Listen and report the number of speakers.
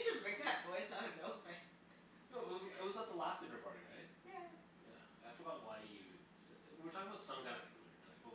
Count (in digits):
2